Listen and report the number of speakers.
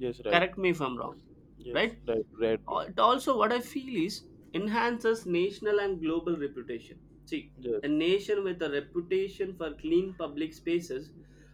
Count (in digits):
2